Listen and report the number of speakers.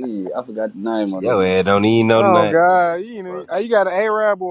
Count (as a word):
three